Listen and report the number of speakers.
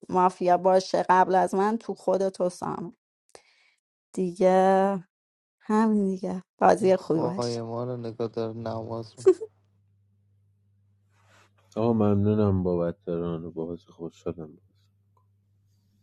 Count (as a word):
three